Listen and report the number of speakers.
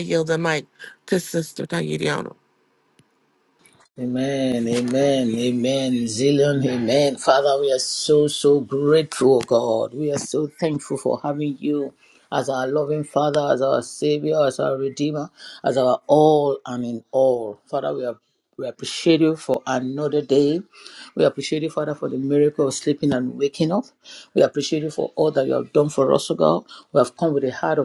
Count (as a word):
two